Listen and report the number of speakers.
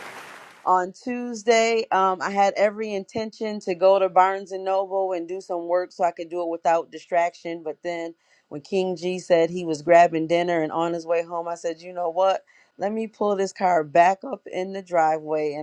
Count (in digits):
1